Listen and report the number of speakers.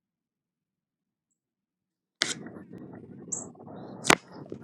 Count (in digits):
0